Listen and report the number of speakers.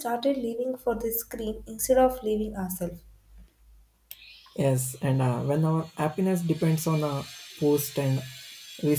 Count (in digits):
2